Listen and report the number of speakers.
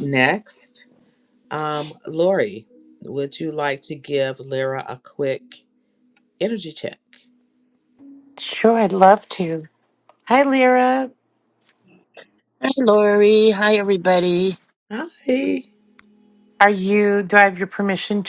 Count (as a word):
three